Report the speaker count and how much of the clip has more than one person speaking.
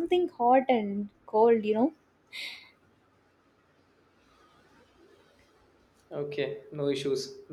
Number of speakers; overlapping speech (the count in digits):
2, no overlap